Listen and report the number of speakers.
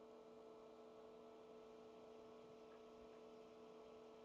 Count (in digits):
0